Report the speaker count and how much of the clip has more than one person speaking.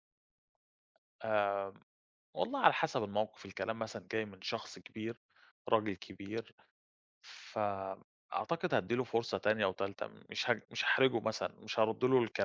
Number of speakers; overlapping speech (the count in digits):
1, no overlap